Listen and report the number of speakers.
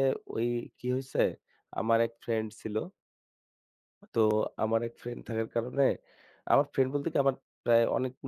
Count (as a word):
one